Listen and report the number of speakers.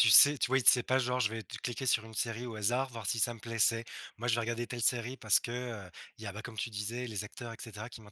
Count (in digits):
1